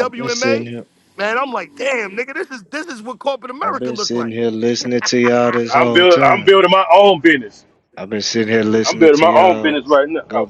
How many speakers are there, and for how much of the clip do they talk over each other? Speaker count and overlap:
3, about 32%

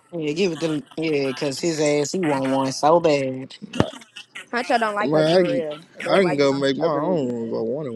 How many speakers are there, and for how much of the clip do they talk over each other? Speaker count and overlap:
3, about 24%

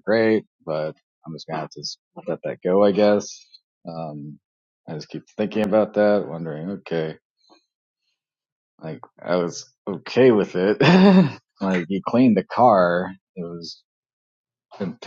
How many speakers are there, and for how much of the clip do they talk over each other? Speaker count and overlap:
1, no overlap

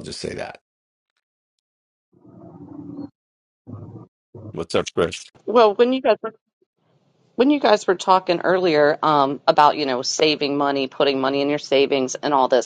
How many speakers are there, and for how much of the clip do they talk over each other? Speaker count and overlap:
2, no overlap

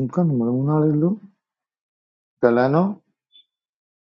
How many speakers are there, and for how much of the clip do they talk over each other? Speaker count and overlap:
1, no overlap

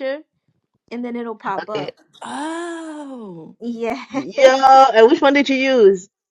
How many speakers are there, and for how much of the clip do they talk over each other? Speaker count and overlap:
3, about 5%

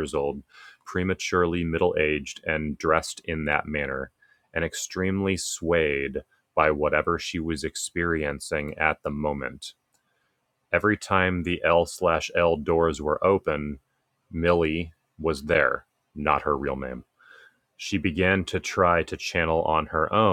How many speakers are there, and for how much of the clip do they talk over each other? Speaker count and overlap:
1, no overlap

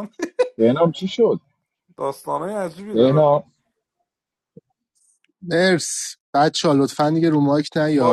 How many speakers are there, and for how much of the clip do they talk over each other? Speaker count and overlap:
3, about 6%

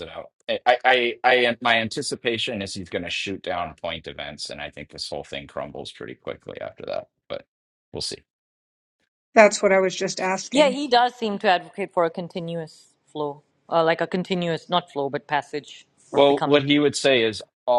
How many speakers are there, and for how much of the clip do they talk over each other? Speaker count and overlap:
3, about 4%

